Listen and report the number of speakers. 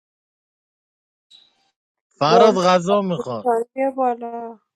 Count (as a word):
two